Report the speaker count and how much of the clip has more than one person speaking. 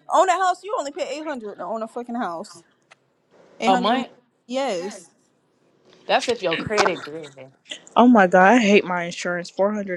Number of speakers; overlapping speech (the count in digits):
3, about 4%